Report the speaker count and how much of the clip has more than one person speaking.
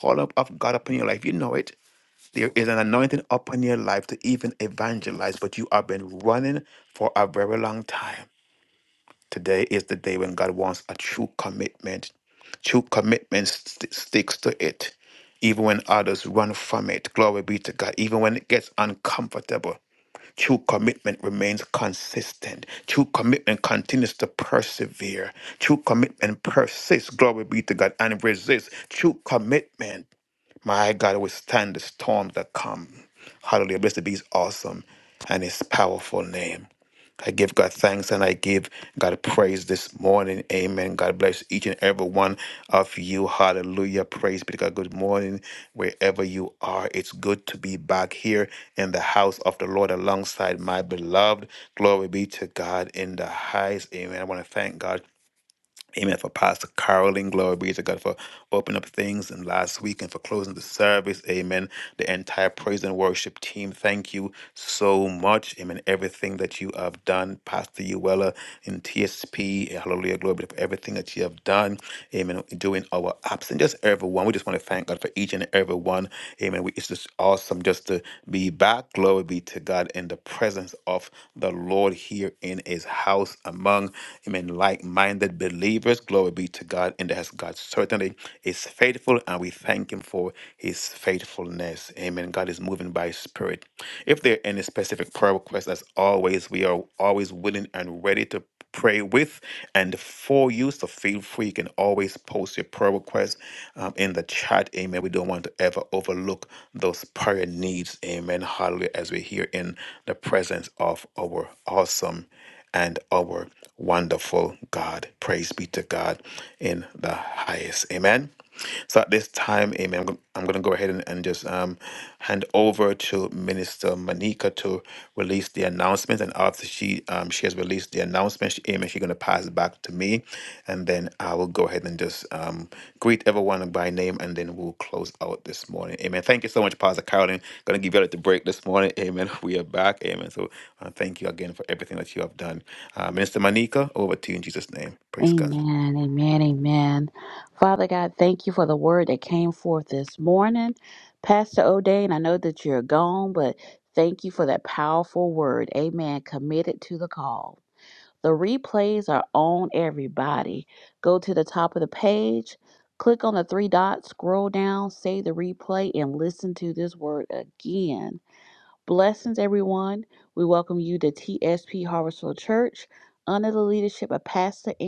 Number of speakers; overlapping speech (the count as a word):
two, under 1%